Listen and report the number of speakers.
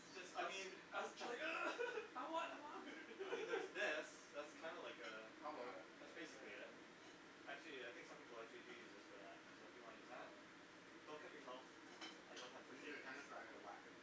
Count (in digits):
3